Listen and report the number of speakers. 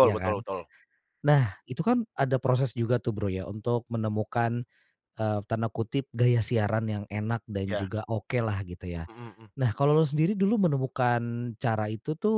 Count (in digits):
2